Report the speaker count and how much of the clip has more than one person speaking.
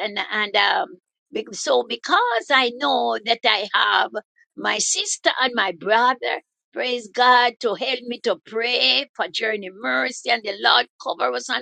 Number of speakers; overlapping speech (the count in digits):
1, no overlap